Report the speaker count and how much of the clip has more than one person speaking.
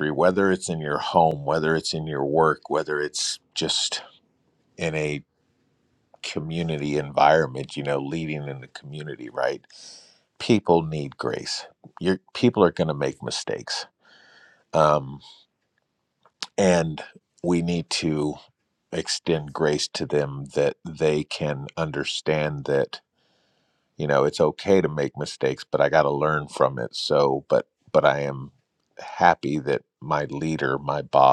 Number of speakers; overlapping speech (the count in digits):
1, no overlap